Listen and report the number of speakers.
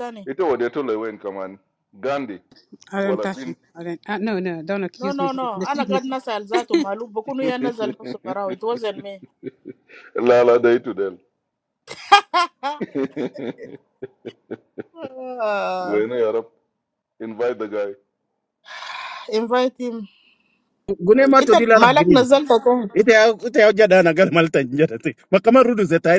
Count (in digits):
4